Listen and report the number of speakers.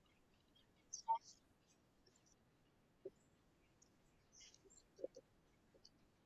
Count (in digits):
0